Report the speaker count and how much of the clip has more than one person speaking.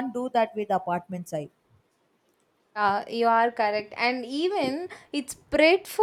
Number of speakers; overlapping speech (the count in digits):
2, no overlap